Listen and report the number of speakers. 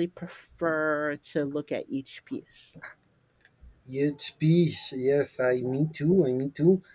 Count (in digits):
2